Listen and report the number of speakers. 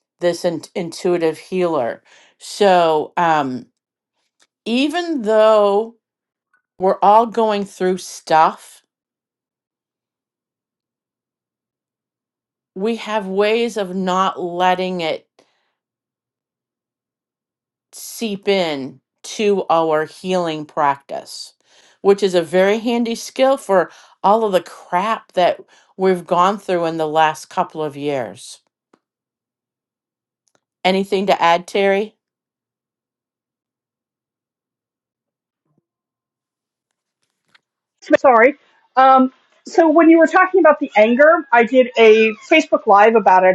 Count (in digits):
2